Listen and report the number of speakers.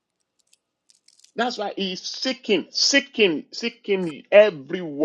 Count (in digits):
1